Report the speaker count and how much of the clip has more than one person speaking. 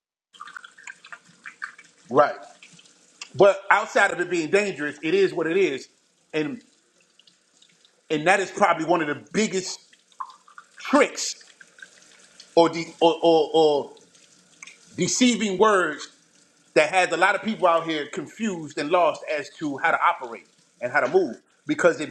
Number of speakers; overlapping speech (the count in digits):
1, no overlap